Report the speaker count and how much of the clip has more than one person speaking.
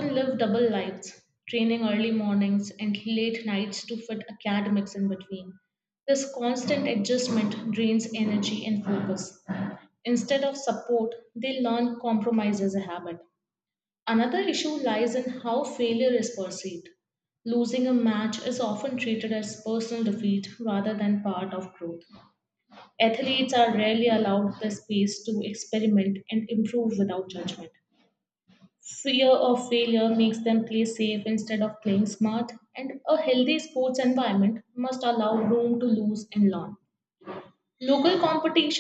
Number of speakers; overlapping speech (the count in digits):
1, no overlap